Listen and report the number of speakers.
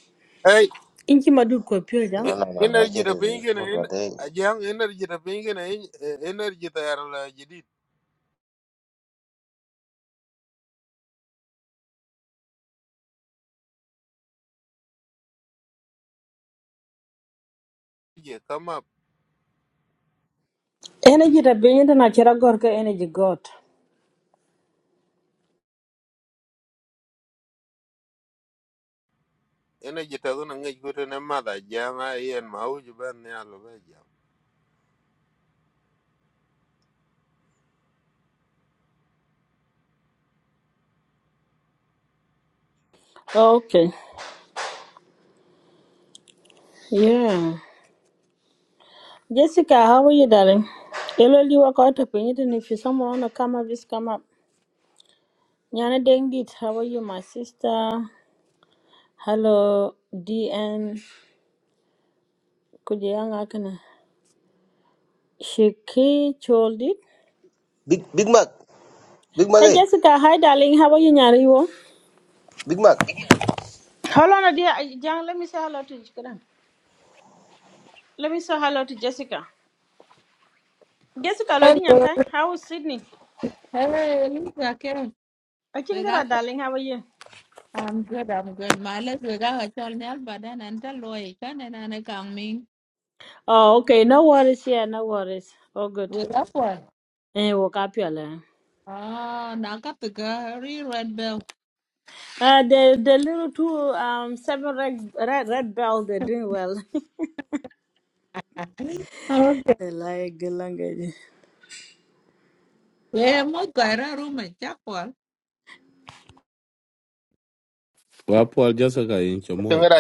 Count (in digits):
5